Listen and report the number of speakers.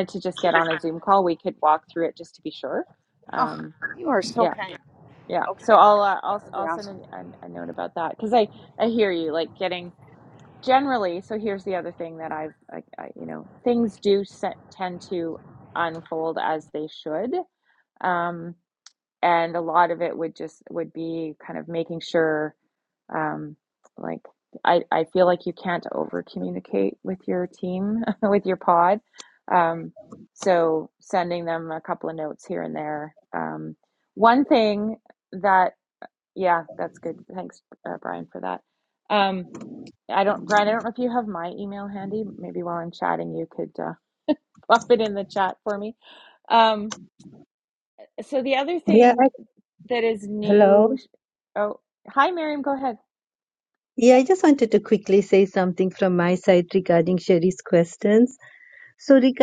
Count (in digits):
3